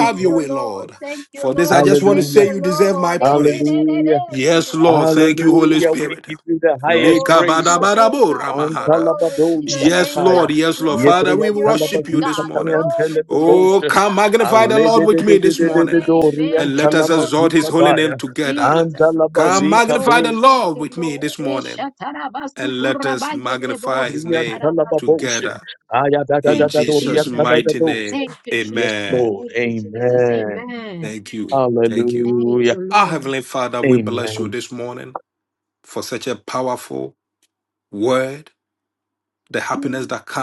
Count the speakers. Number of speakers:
3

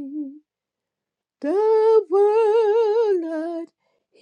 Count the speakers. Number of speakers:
1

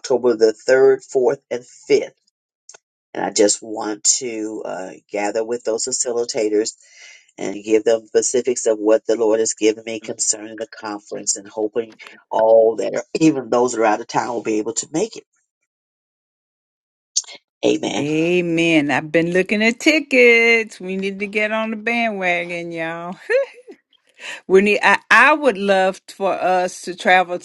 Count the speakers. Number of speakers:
2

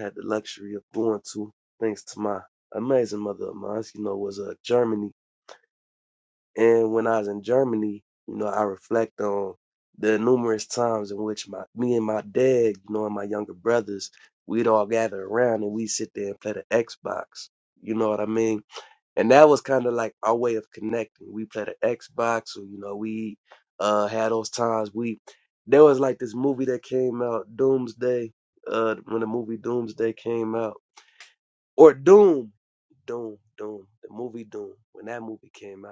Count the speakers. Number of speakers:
1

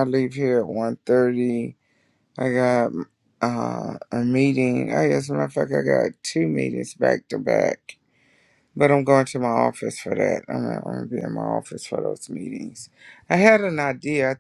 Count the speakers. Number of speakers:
1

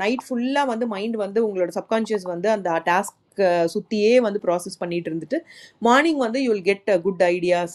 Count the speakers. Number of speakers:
1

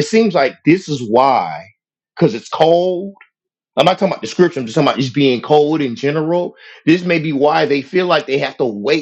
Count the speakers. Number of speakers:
1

